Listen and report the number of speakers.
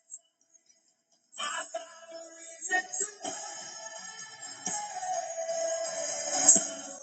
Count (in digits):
0